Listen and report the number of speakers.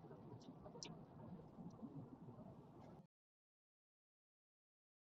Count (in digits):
0